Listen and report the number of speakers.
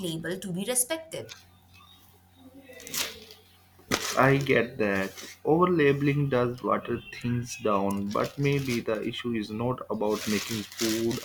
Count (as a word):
two